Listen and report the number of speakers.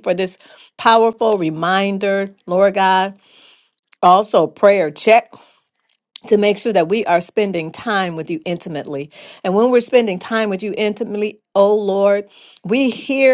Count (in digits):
1